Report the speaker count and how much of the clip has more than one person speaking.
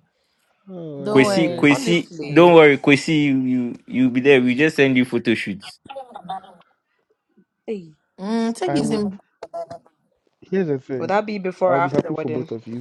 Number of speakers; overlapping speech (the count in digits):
4, about 22%